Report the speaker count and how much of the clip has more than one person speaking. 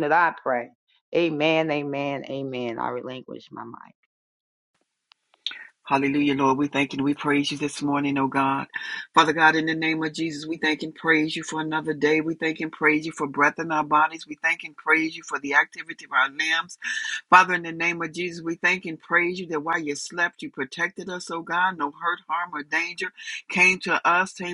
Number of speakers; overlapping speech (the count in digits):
2, no overlap